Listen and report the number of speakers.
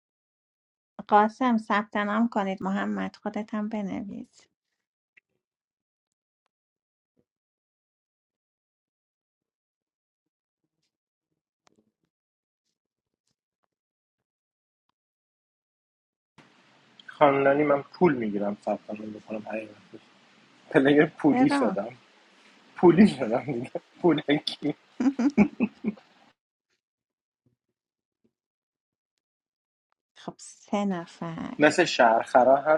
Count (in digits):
2